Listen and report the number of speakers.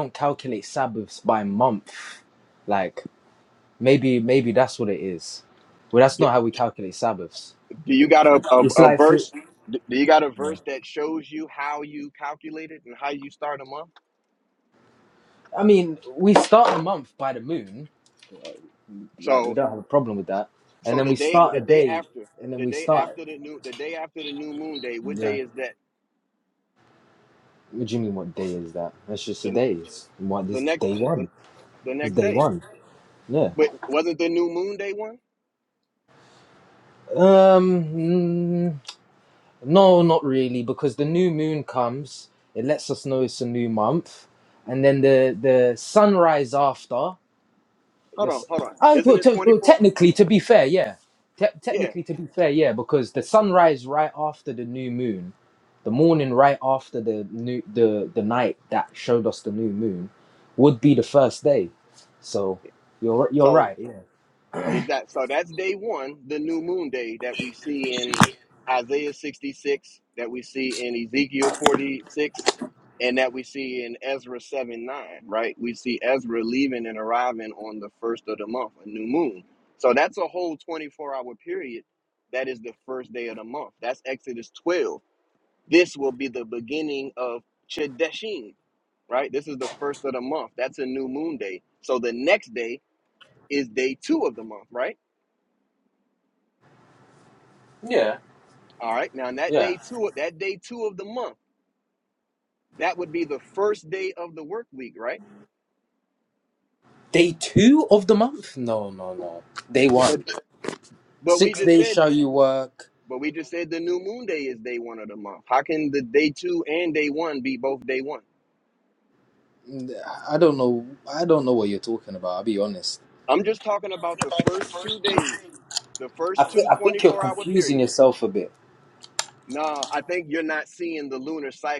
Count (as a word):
two